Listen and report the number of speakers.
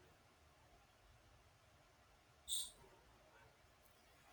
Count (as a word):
zero